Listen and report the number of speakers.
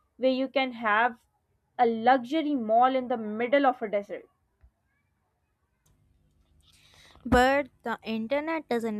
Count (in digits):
2